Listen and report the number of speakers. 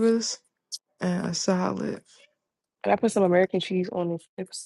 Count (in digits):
2